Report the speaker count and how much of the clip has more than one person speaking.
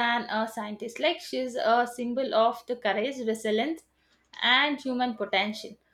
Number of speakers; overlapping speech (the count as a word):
one, no overlap